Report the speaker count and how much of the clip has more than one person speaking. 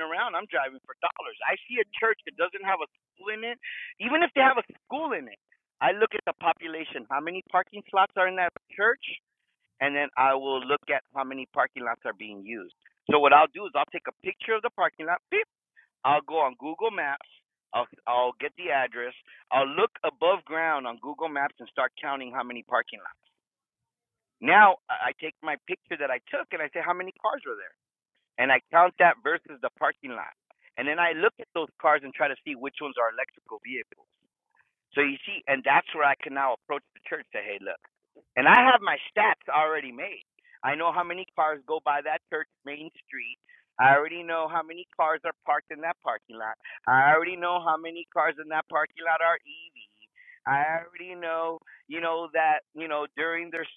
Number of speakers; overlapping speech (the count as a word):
one, no overlap